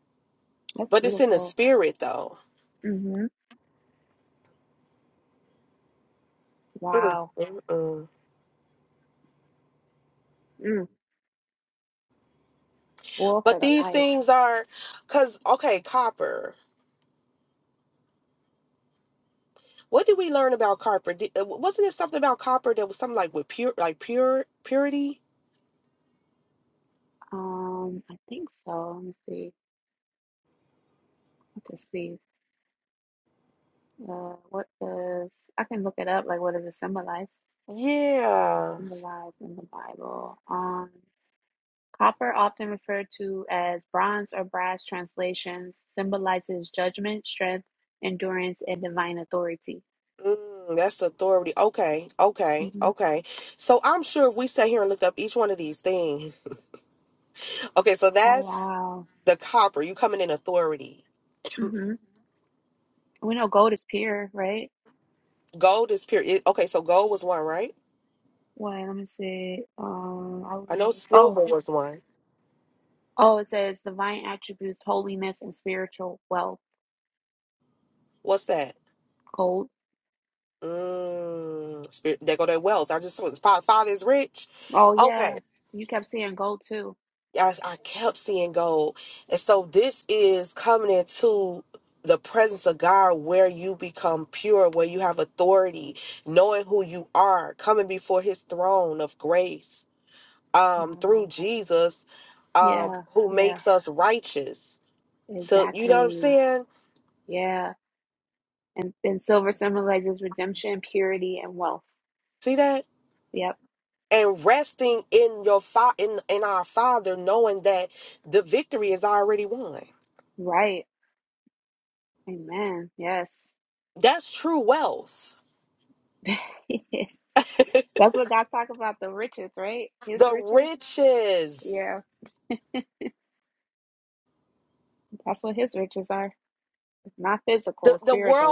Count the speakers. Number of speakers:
two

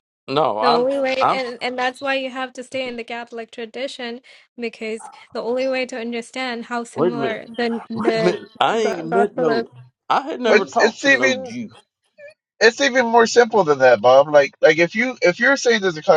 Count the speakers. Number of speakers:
three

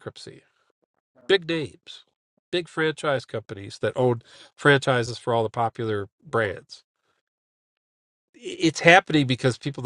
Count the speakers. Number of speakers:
one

